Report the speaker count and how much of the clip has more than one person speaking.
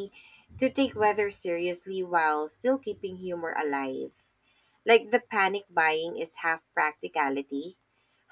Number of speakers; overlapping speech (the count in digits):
1, no overlap